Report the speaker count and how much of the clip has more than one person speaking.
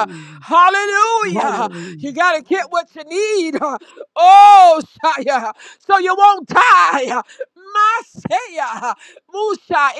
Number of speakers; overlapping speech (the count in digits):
2, about 3%